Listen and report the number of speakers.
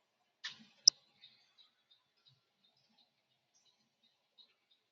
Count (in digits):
0